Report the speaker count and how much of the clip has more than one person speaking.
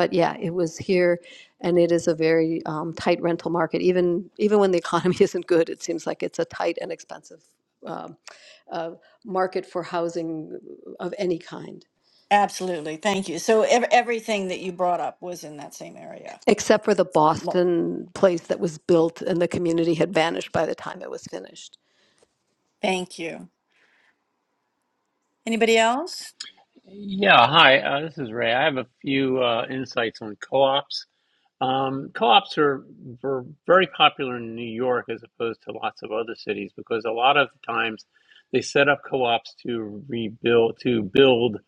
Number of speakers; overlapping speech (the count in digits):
3, under 1%